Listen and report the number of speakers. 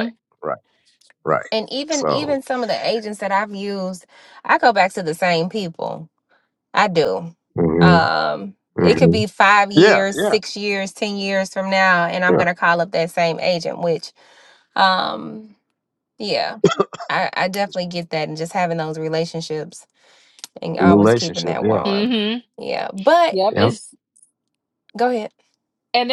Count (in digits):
3